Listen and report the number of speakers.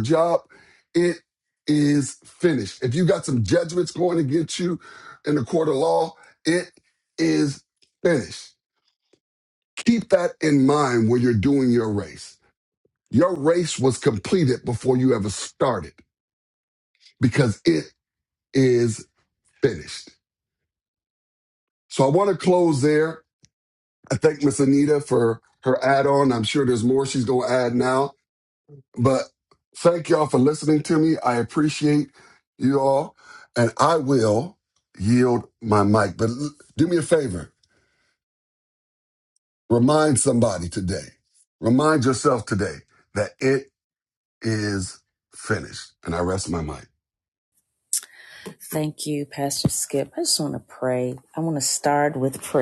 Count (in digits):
2